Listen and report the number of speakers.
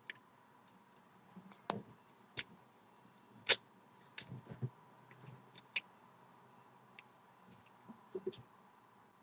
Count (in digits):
0